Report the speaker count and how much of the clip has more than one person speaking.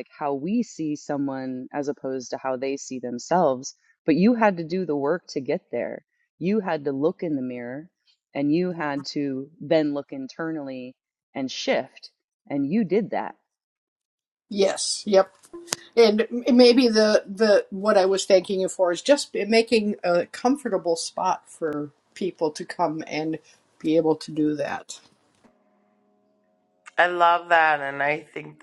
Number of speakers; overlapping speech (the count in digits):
3, no overlap